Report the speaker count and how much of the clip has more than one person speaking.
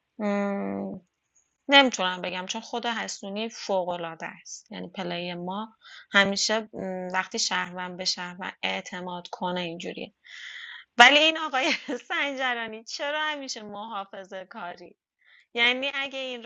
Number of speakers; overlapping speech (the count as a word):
one, no overlap